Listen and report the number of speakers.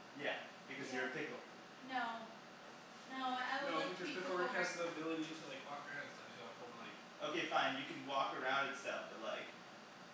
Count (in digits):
3